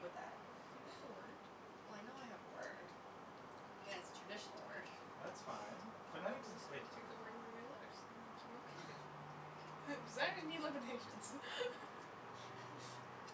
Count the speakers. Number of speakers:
3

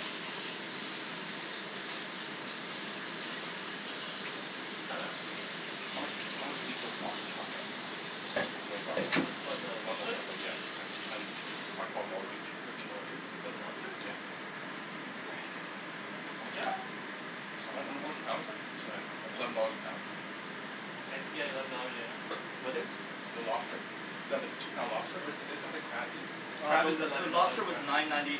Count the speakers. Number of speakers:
3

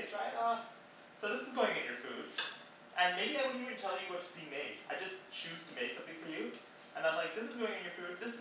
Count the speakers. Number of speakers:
1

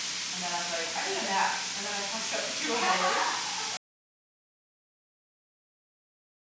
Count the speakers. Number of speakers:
1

